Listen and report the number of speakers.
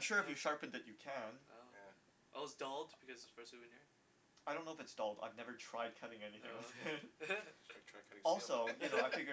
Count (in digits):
3